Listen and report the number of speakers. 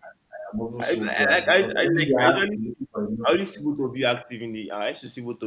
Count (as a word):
two